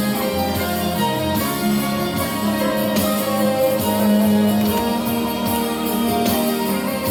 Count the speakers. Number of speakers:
zero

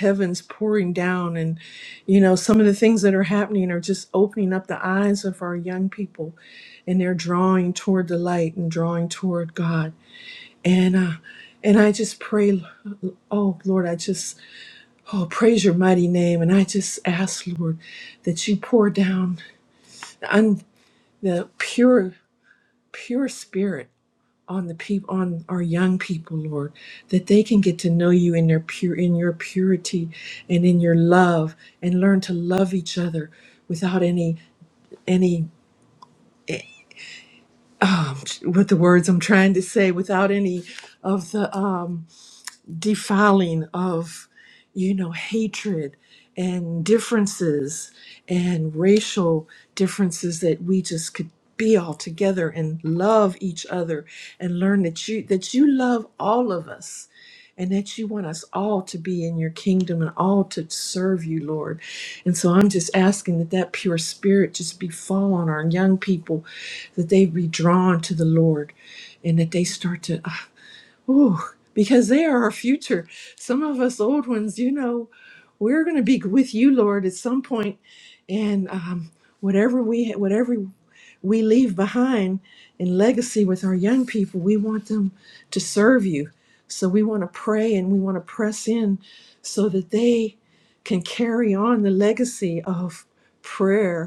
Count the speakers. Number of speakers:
one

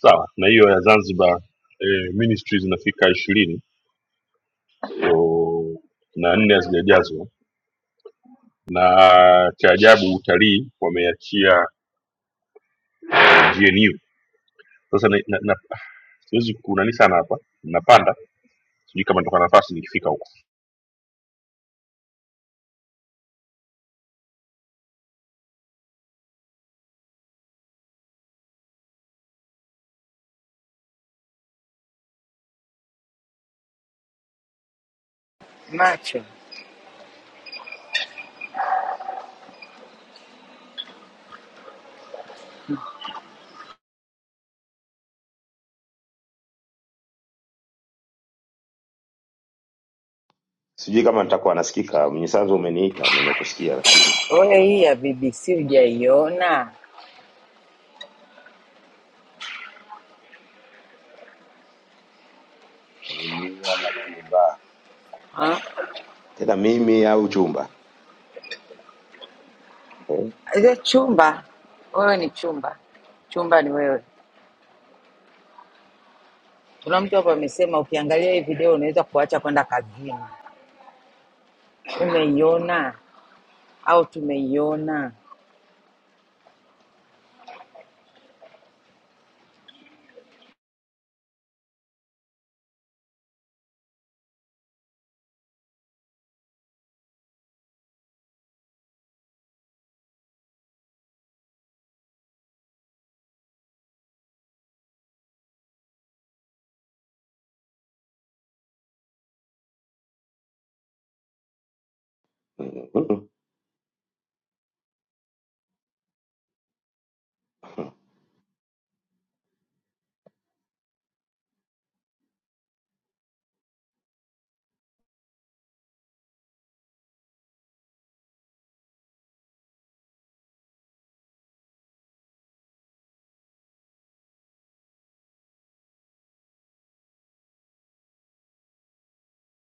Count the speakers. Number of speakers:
three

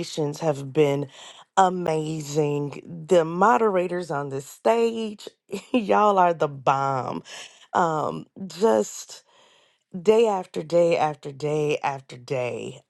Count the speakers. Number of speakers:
one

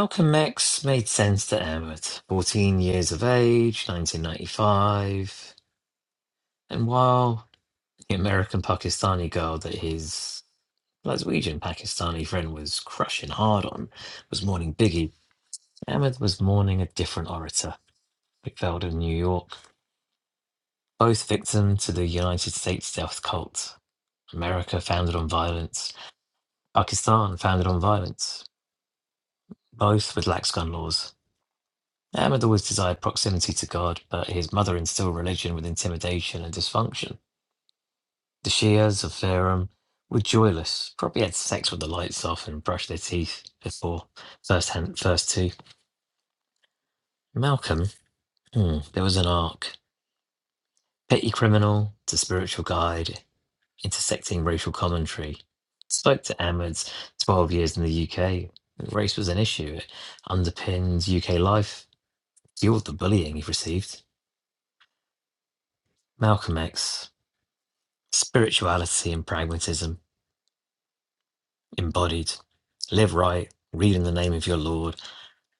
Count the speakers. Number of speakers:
one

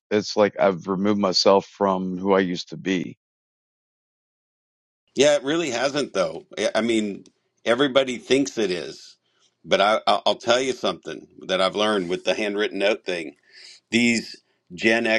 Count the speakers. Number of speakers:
two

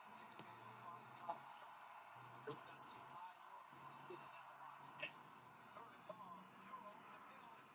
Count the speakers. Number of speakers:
zero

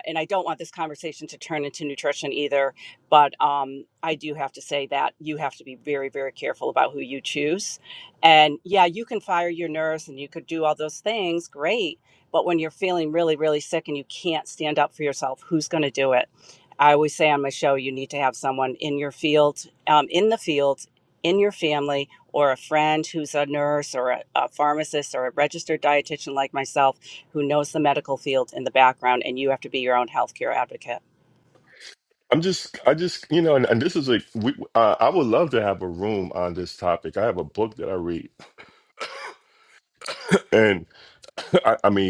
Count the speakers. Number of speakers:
two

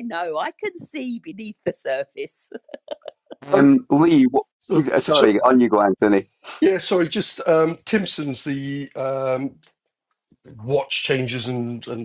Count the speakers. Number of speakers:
three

